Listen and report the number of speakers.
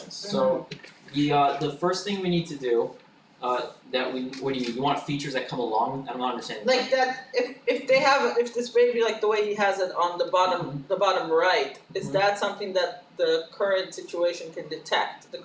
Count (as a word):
two